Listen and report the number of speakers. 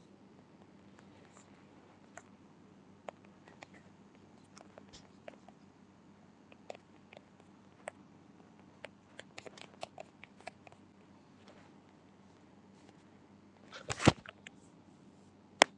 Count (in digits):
0